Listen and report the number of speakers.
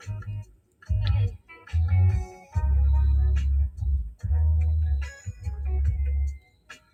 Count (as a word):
zero